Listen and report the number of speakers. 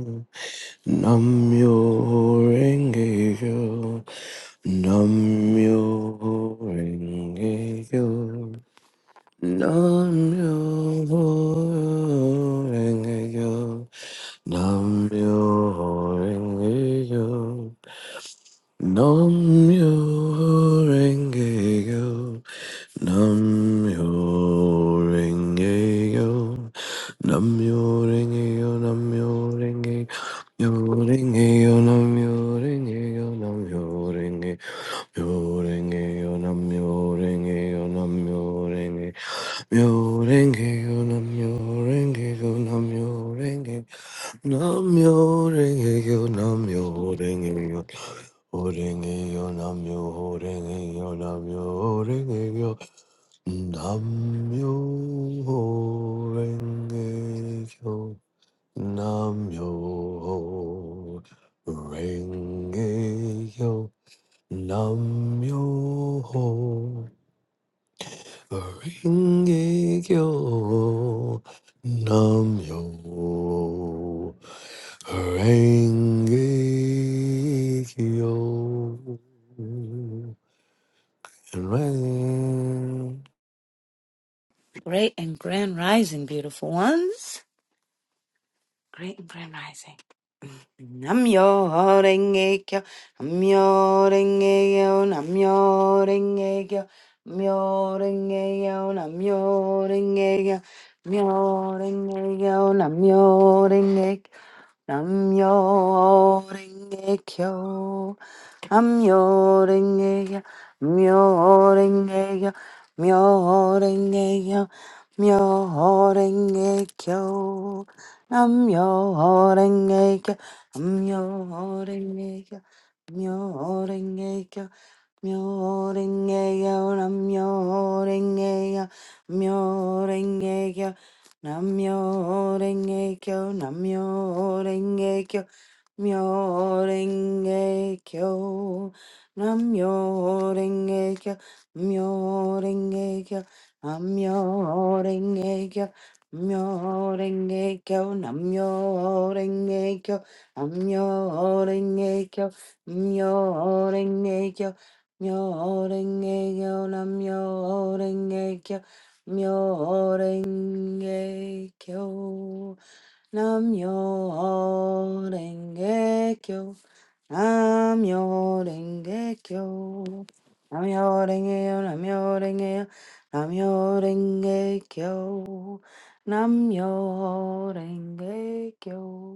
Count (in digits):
2